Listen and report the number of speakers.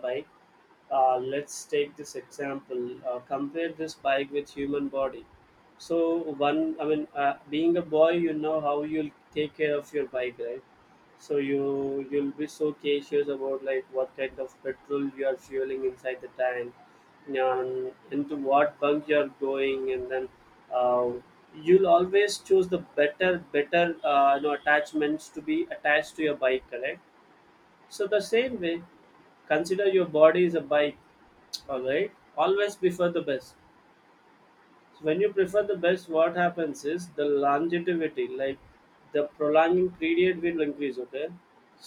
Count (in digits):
1